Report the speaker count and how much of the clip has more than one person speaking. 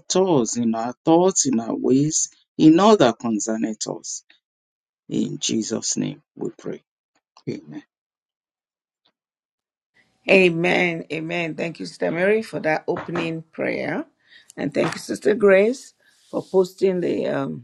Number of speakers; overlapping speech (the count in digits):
2, no overlap